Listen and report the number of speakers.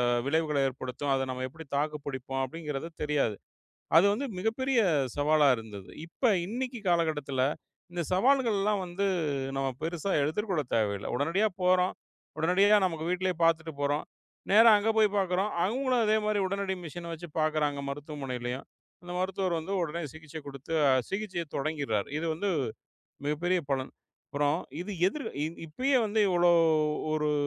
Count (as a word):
one